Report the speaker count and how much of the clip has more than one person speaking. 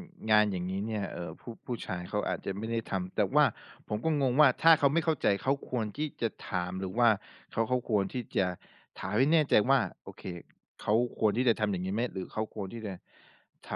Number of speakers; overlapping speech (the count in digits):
1, no overlap